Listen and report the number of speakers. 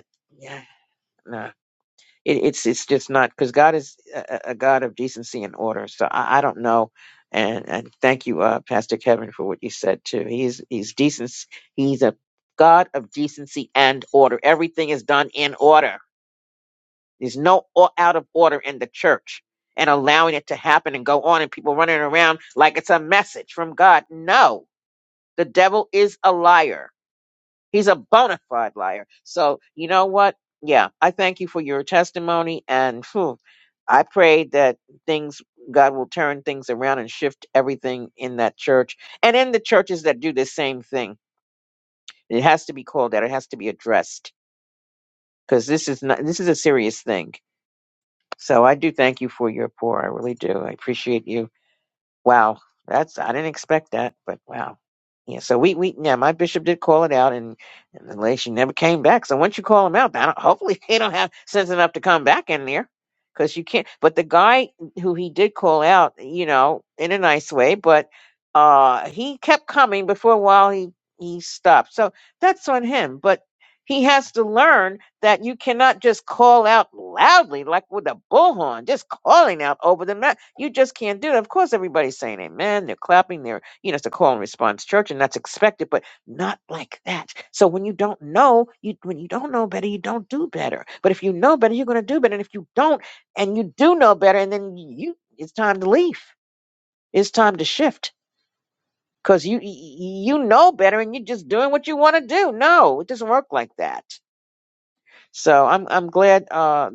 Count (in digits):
1